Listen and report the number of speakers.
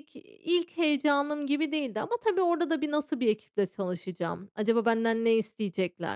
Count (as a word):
one